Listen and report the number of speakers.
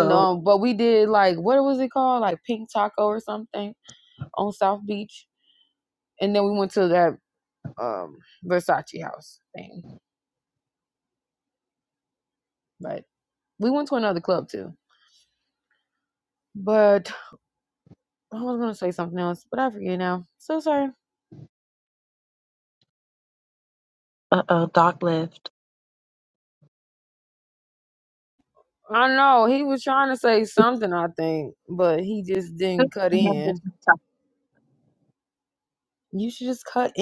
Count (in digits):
2